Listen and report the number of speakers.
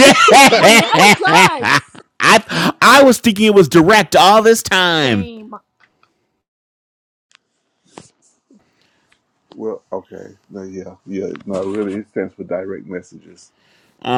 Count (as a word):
three